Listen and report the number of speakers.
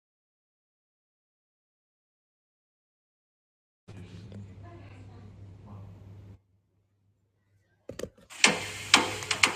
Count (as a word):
zero